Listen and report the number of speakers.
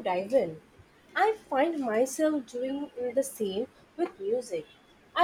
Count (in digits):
1